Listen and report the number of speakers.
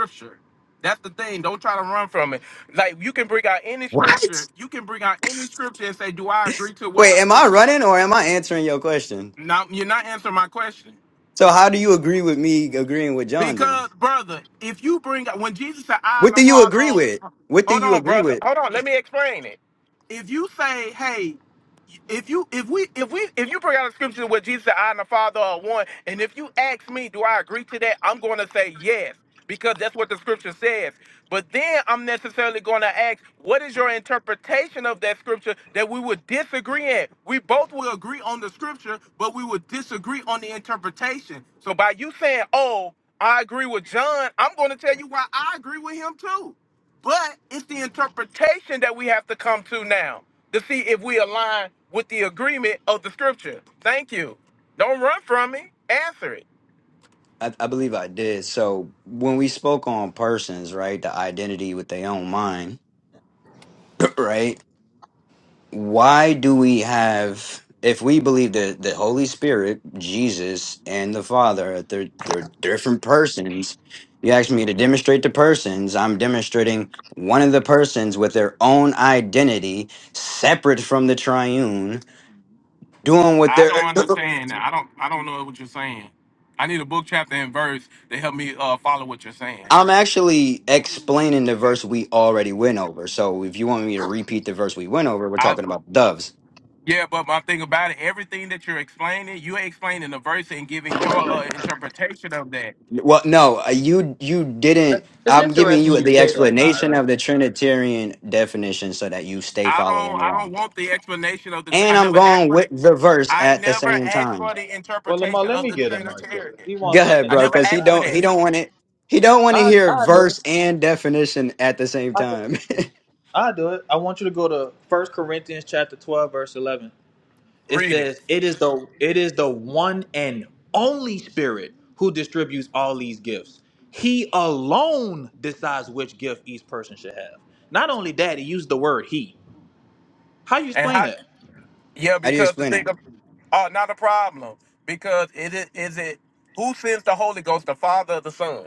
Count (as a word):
three